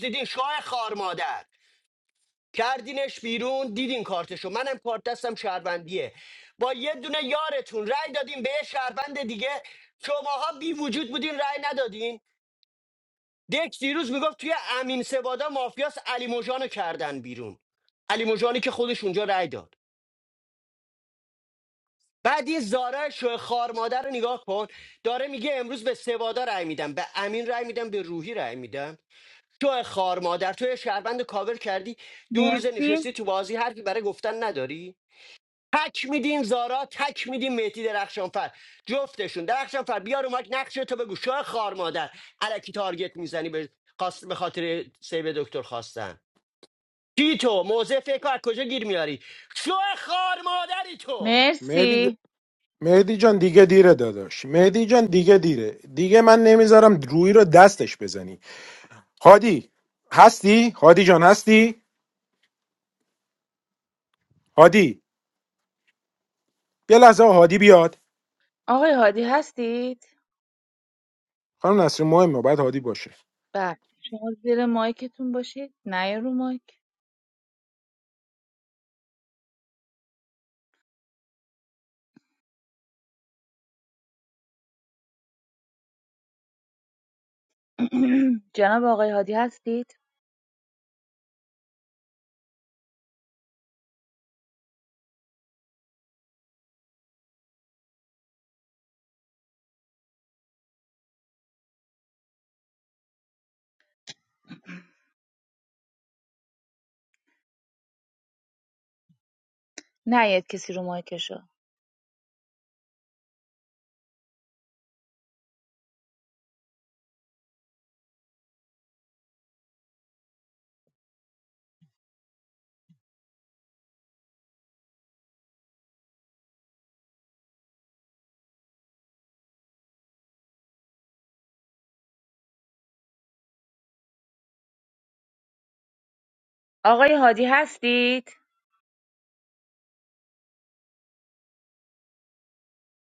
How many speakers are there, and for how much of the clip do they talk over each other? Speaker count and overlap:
three, about 1%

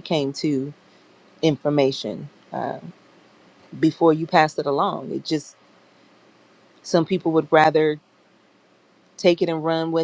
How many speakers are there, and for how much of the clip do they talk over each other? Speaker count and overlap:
one, no overlap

